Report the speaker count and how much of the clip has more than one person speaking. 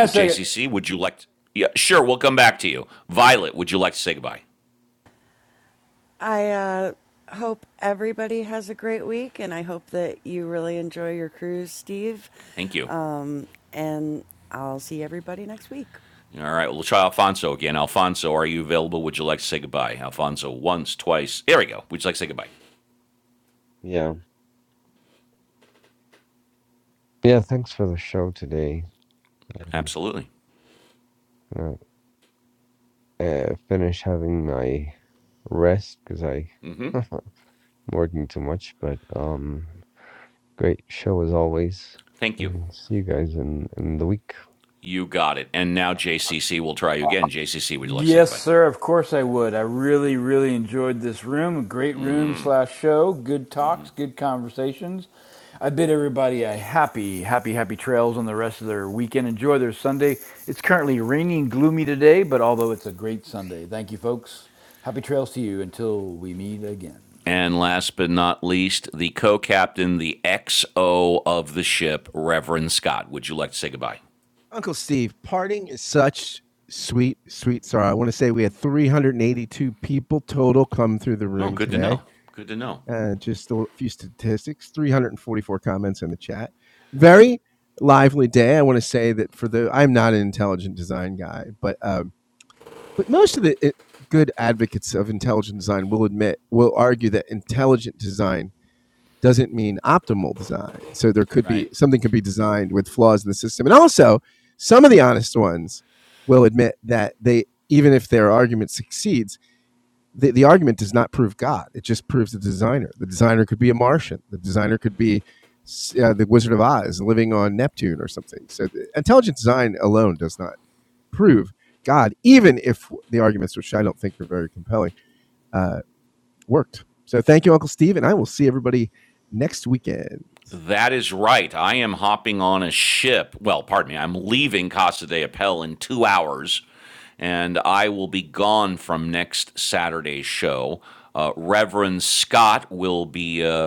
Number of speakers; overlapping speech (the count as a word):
five, about 1%